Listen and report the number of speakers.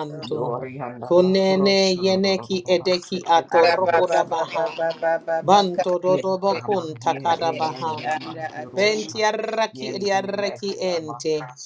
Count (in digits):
3